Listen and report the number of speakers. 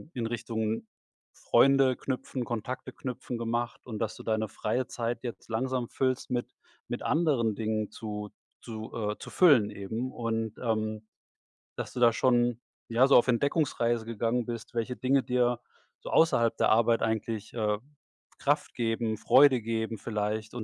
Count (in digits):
1